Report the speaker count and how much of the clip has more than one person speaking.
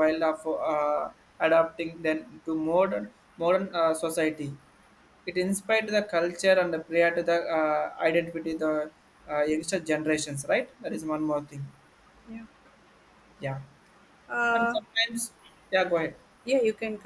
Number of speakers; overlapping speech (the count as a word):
two, about 2%